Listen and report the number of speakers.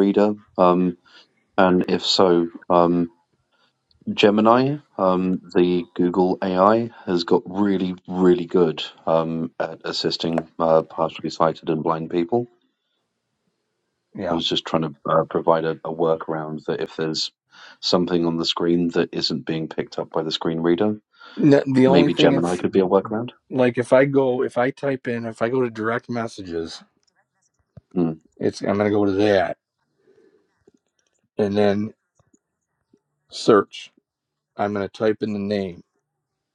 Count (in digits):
2